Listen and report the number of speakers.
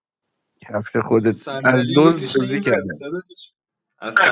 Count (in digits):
2